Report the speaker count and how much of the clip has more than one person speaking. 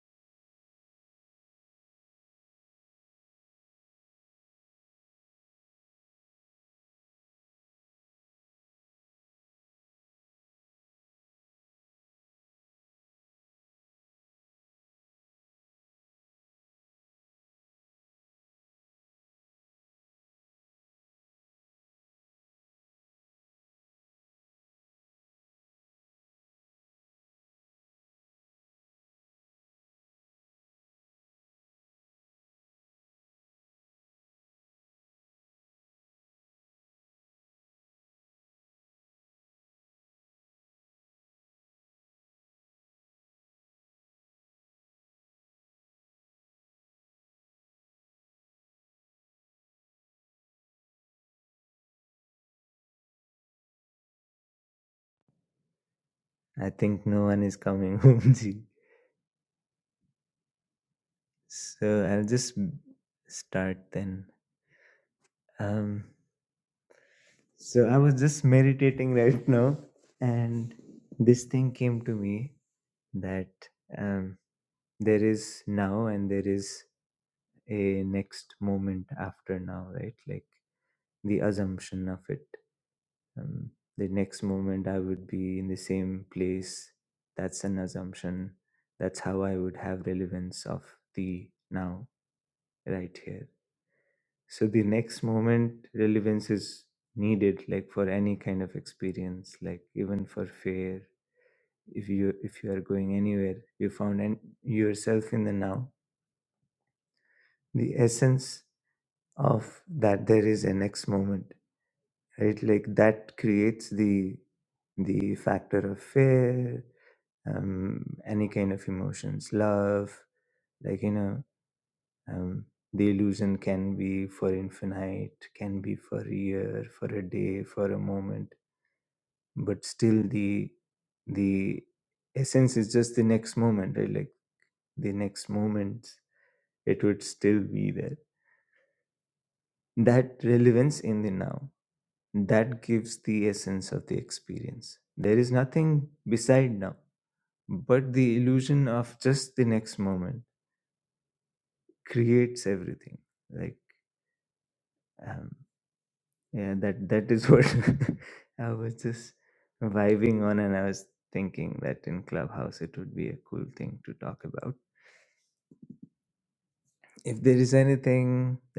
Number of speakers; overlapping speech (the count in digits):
1, no overlap